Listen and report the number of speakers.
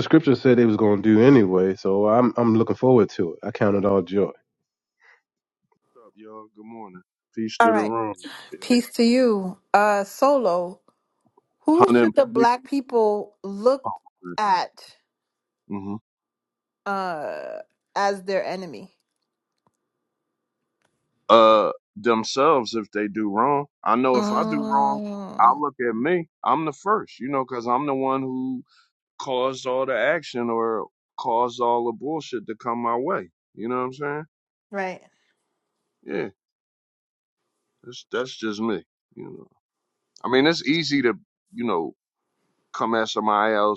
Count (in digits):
3